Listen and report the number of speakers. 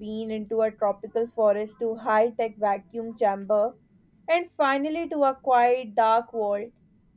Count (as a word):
one